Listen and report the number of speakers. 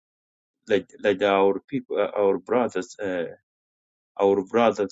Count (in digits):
1